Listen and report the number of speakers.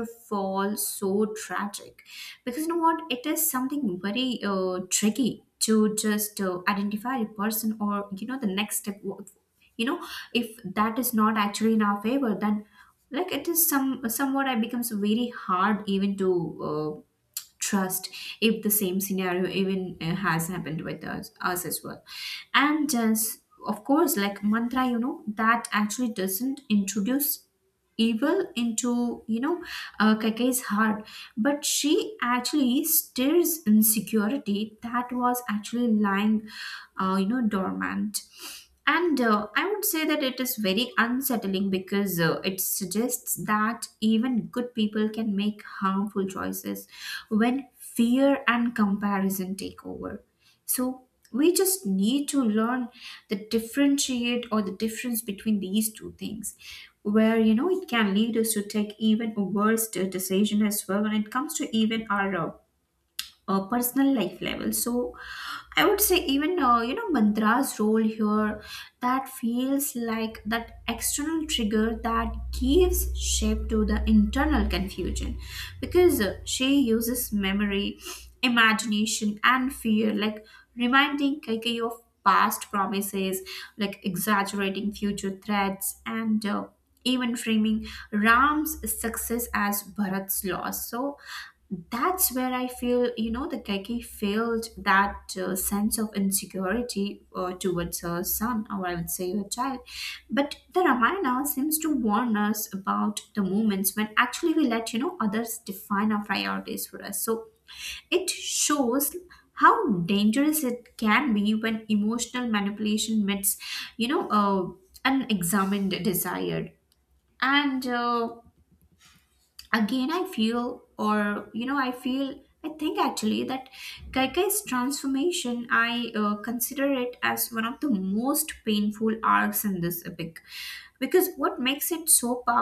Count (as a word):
one